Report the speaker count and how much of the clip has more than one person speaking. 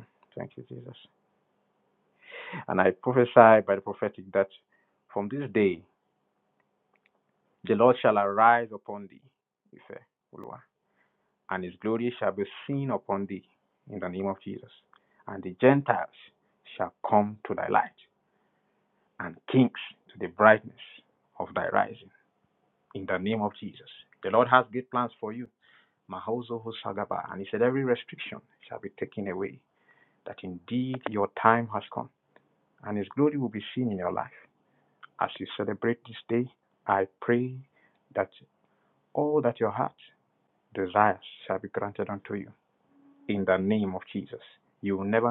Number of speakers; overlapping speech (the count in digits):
1, no overlap